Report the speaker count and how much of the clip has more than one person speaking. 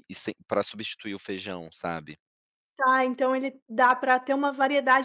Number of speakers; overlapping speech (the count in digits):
2, no overlap